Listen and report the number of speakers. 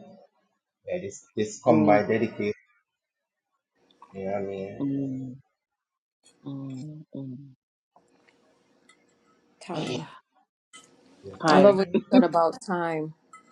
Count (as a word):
three